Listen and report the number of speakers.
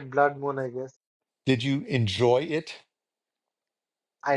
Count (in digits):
2